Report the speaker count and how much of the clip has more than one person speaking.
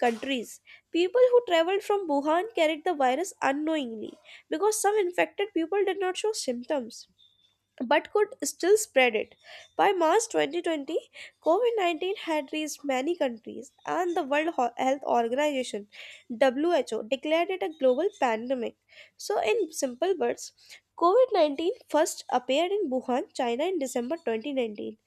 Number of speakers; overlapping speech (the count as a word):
one, no overlap